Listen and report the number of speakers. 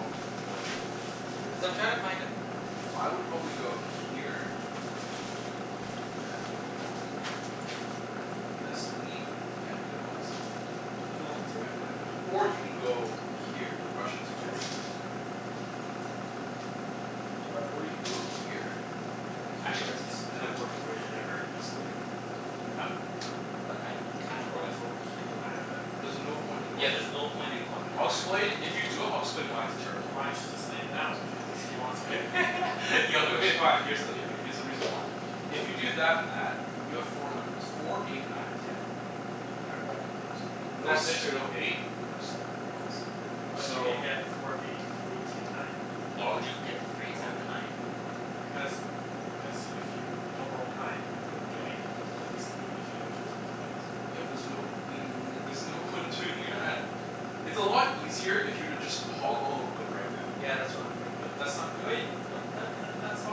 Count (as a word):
four